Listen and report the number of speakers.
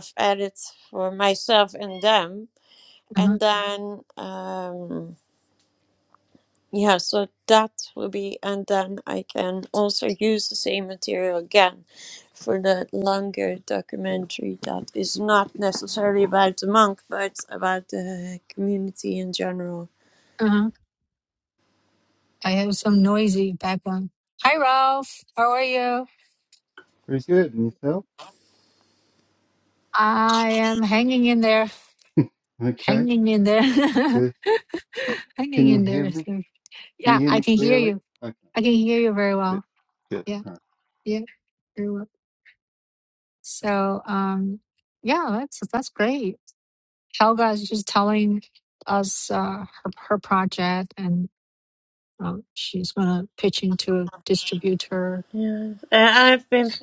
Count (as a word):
three